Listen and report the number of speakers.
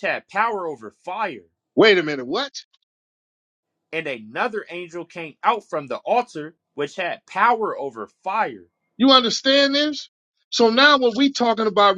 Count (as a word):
two